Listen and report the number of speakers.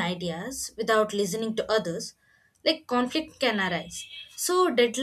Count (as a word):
one